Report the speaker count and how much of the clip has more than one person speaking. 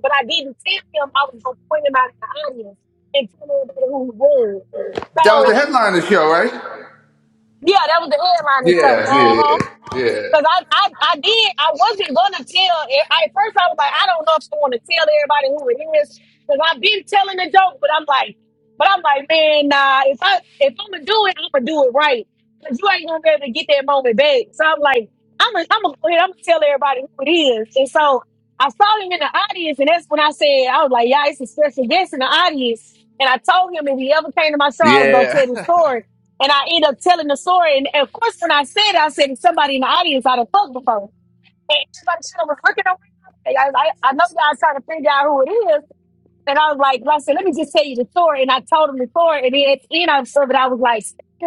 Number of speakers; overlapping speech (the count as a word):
two, about 3%